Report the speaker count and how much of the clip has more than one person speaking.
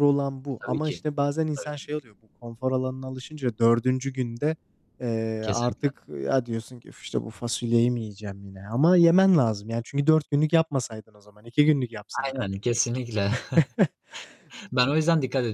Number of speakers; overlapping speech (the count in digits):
2, about 6%